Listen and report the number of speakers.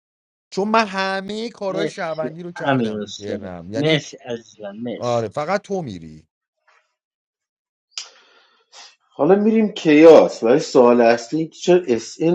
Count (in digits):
3